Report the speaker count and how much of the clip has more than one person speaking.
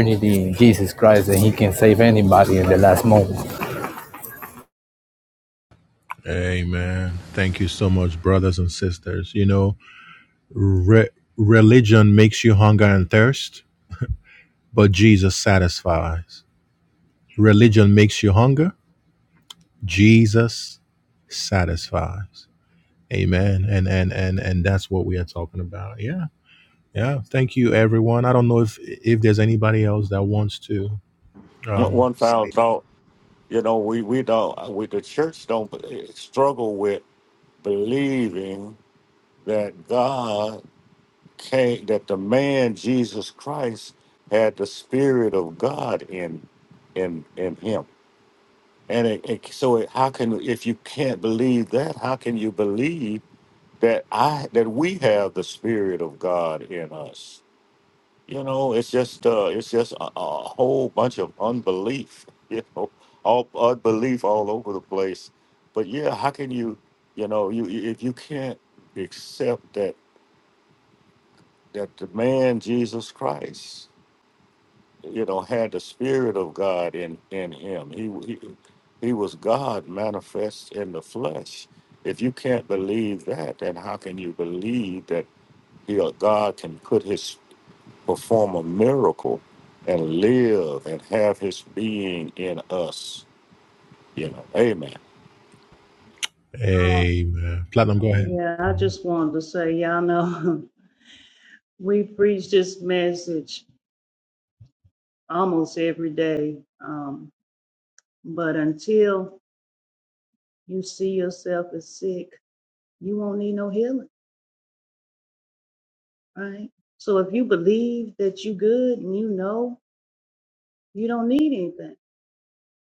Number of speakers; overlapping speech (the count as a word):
four, about 1%